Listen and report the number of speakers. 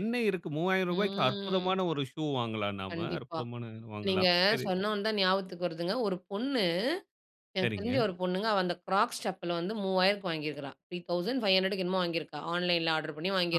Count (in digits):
2